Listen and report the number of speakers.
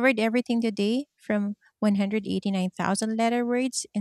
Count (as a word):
one